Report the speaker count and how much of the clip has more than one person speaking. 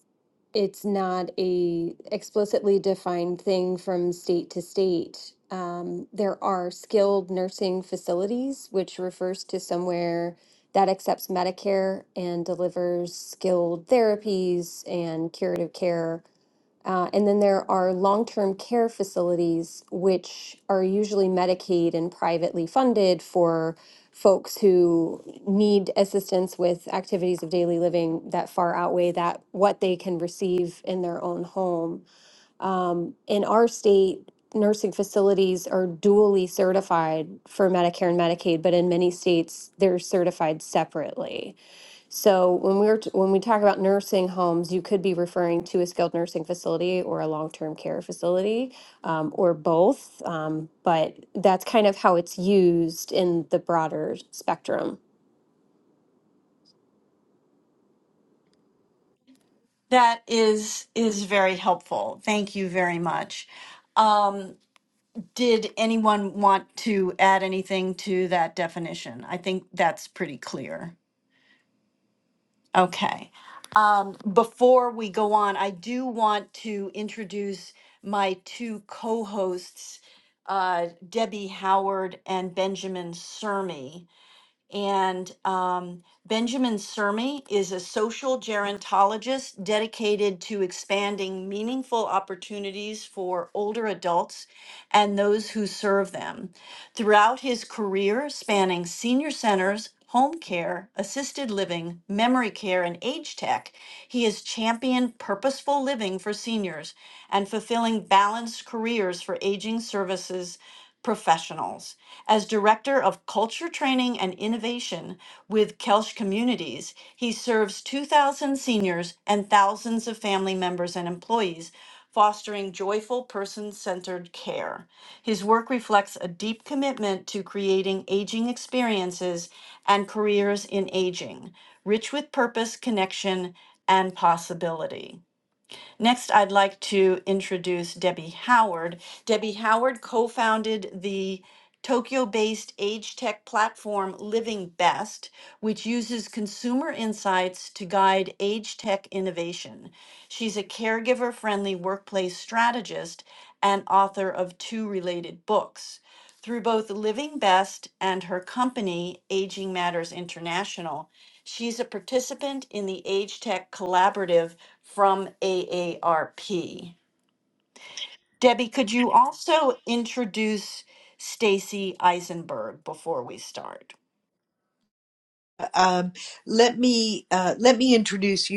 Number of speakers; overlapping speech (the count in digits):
3, no overlap